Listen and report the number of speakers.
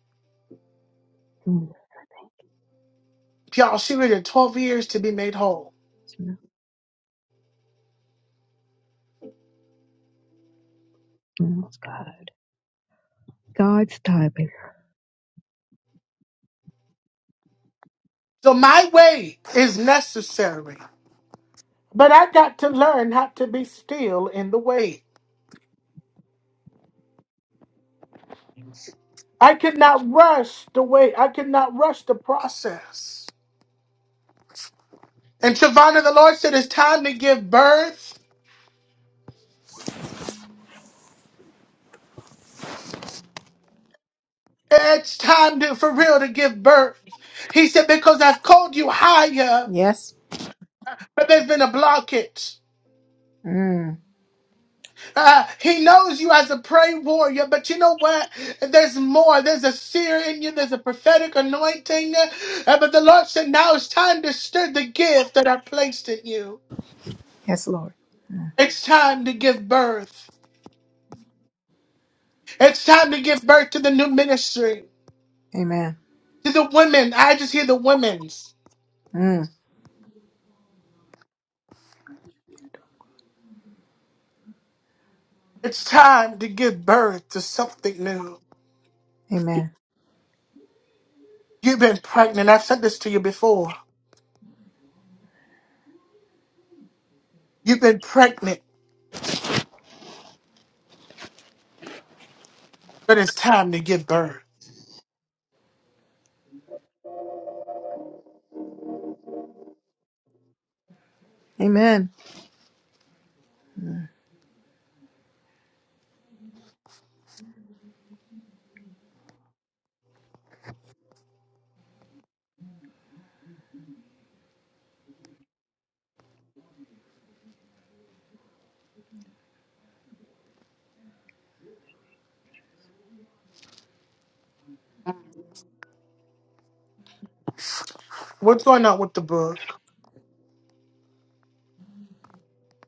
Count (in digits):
3